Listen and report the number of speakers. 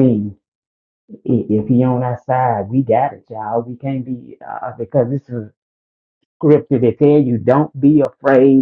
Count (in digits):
1